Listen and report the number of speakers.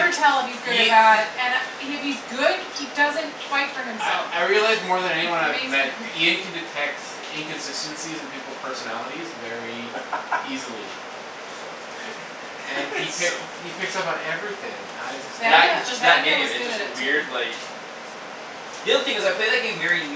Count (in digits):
3